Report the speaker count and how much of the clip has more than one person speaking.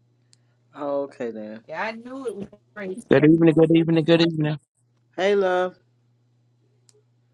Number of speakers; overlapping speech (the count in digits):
3, no overlap